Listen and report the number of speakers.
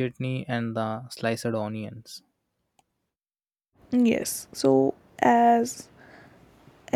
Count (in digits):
2